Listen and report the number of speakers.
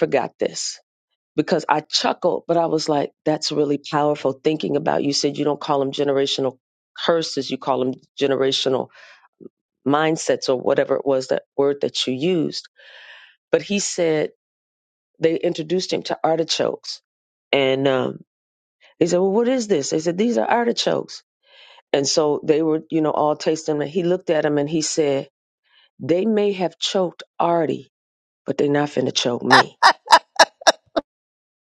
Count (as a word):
one